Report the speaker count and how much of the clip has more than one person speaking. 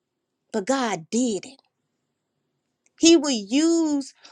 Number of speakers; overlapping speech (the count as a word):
one, no overlap